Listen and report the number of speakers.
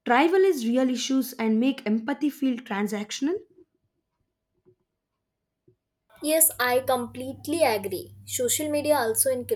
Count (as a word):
two